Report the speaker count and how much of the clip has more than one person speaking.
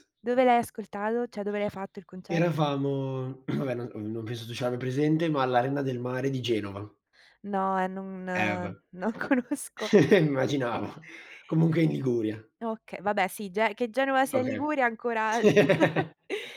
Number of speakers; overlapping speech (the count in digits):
2, about 2%